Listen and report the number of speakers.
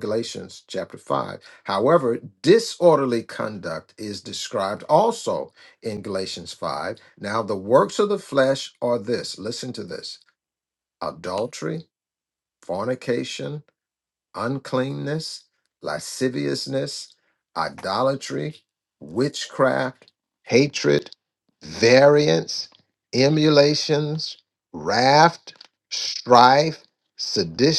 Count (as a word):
one